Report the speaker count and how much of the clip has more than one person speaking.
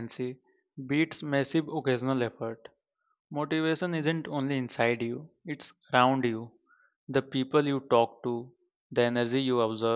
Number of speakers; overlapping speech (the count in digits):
1, no overlap